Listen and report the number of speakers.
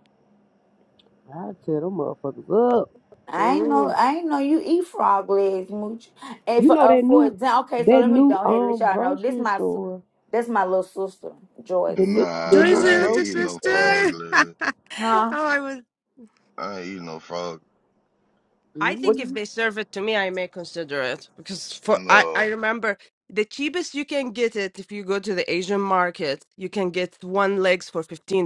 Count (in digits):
4